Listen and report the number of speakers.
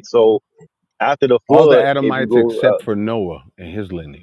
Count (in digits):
2